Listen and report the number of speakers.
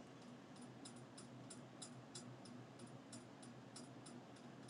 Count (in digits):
0